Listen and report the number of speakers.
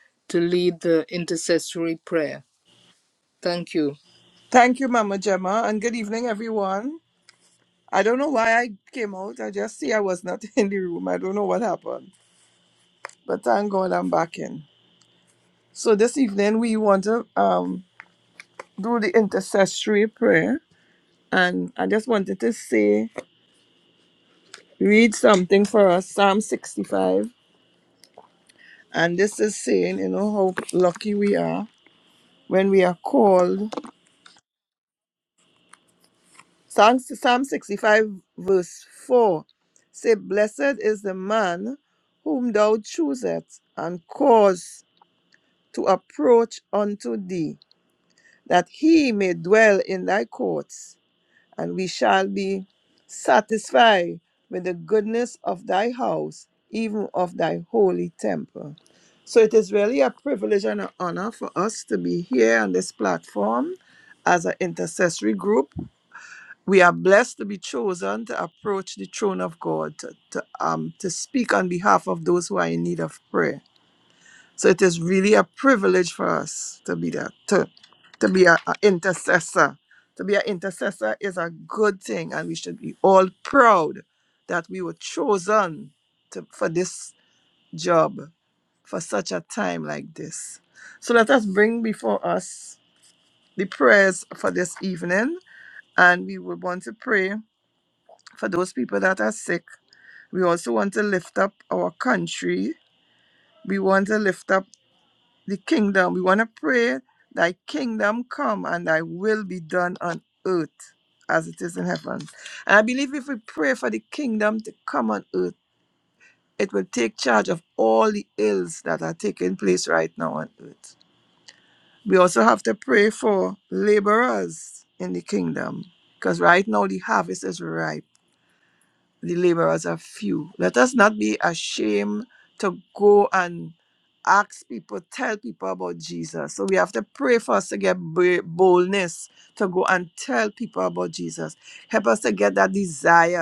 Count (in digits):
2